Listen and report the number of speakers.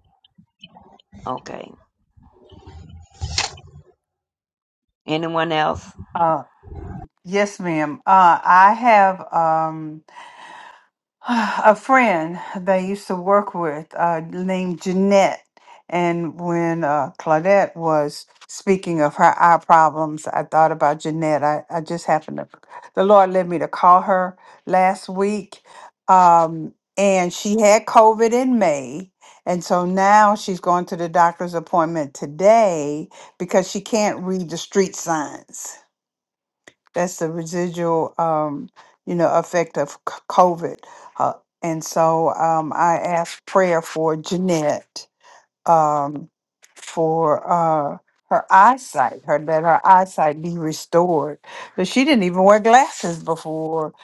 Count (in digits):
2